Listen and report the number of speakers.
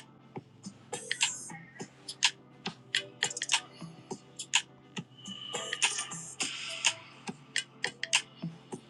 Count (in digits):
0